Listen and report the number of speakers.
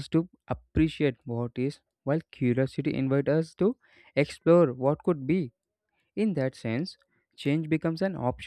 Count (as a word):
one